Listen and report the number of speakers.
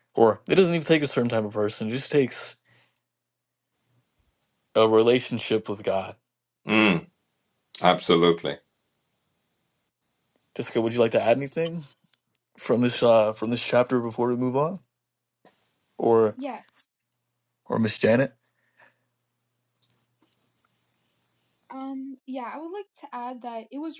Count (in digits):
3